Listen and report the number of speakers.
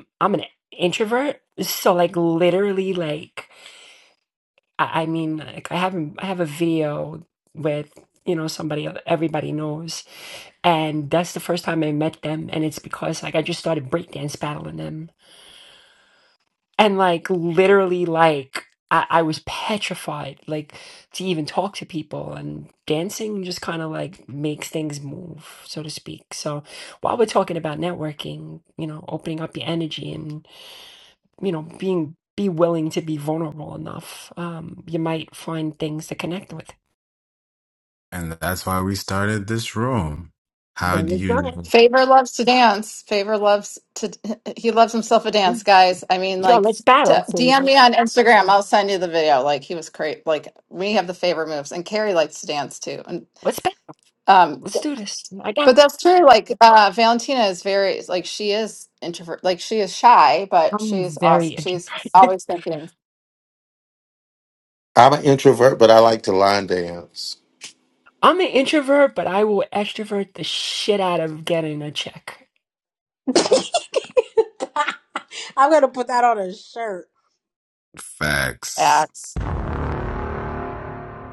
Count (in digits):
5